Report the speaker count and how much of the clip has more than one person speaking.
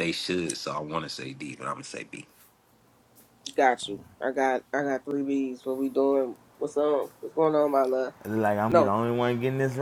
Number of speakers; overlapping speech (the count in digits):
3, about 2%